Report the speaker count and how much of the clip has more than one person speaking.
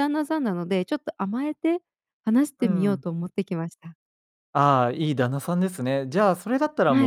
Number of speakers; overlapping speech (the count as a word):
two, about 8%